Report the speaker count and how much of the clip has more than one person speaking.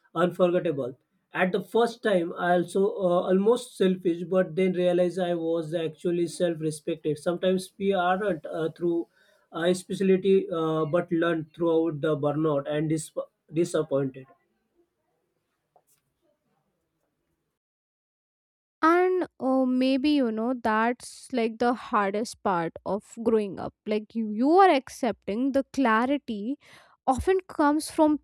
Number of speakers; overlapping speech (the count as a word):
two, no overlap